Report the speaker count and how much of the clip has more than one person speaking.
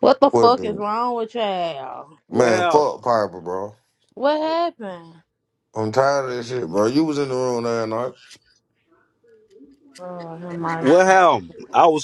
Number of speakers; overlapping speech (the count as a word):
three, about 11%